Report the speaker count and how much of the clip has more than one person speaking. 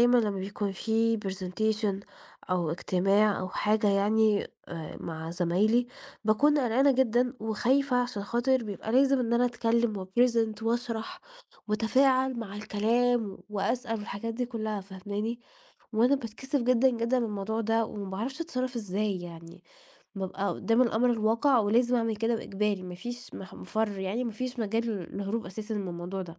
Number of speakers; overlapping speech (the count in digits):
1, no overlap